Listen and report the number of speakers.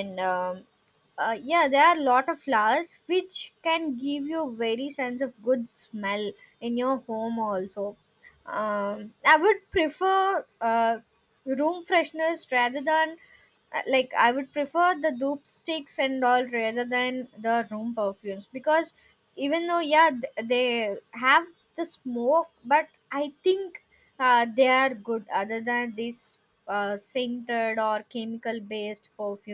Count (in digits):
1